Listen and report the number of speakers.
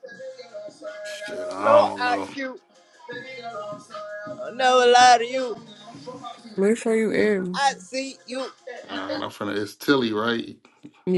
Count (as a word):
three